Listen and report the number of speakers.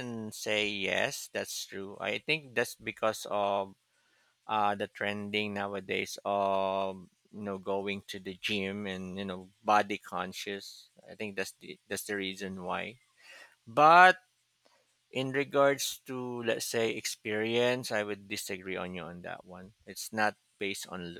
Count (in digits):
1